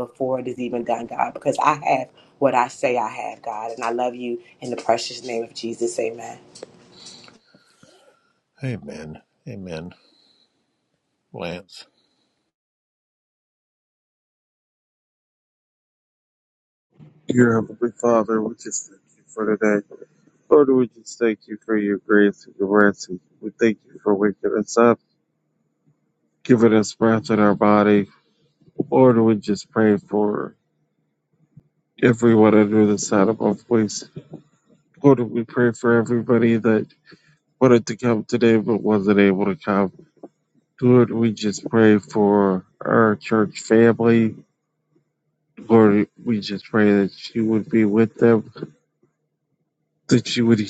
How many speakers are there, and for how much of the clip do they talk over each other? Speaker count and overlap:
three, no overlap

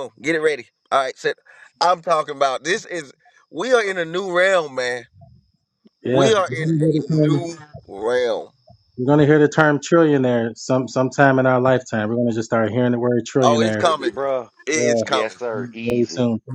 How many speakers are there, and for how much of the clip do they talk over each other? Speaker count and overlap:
three, about 19%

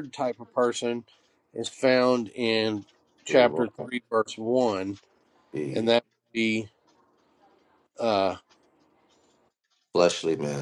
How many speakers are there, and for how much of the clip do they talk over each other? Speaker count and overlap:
two, about 6%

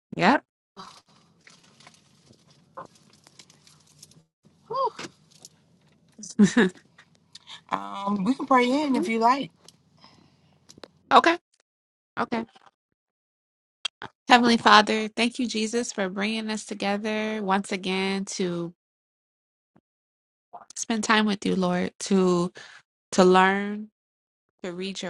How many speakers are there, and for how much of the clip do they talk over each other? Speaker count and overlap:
two, no overlap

